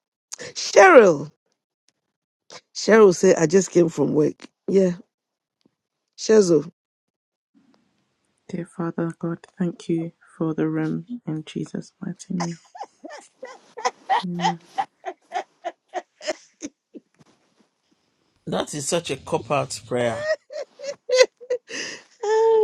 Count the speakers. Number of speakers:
three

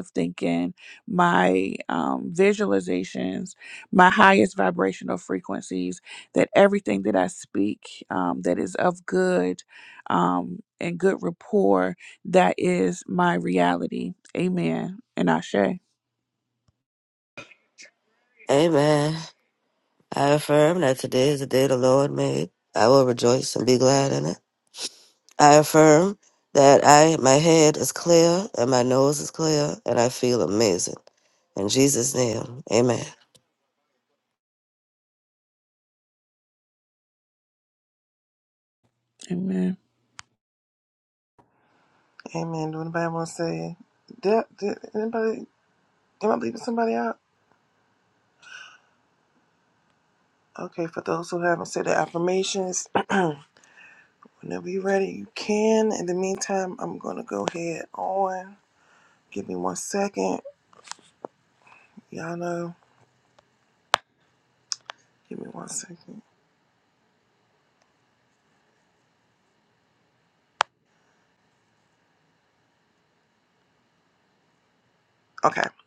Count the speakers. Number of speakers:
three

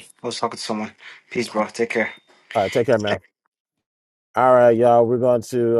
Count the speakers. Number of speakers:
two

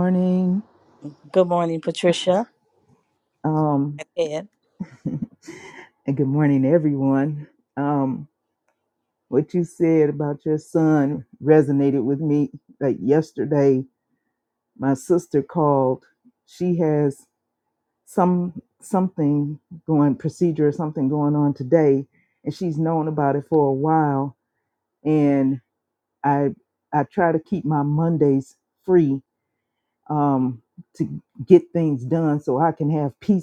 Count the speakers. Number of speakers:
two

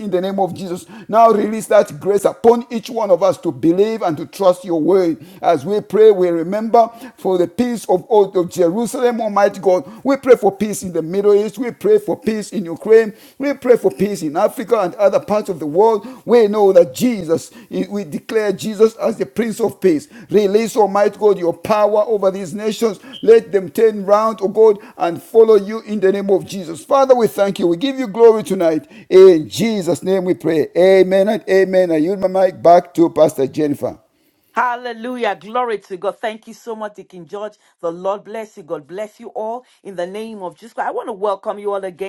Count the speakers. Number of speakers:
two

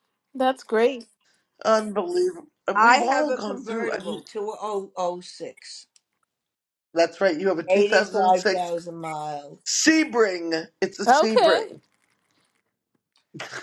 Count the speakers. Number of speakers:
three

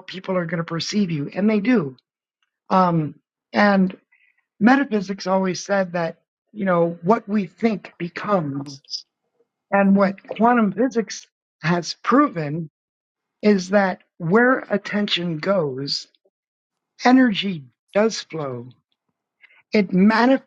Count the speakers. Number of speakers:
one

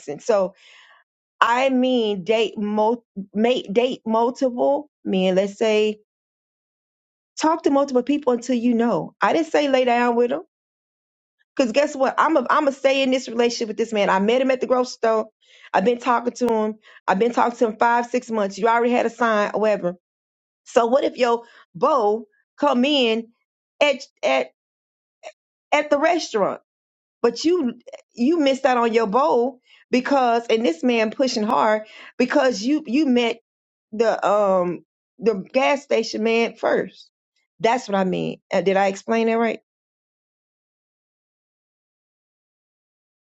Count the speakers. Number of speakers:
one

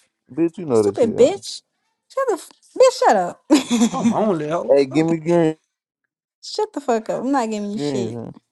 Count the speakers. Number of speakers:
three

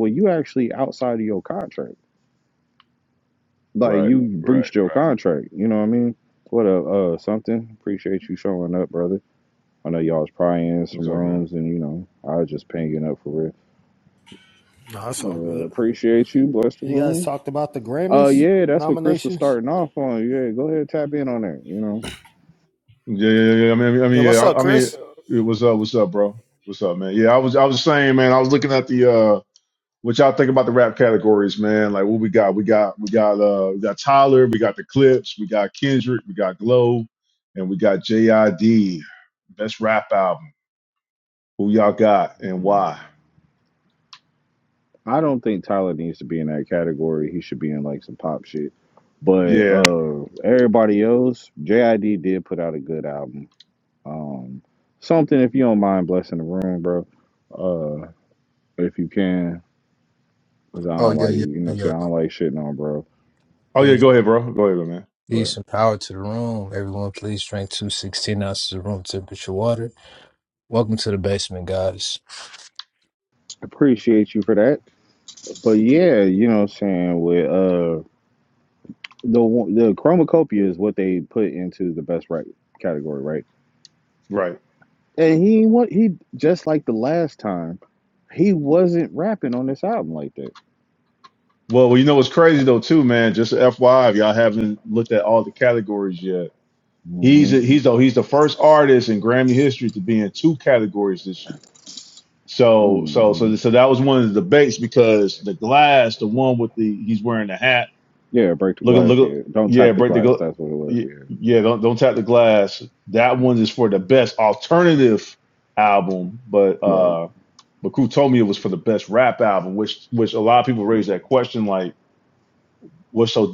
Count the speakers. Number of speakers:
four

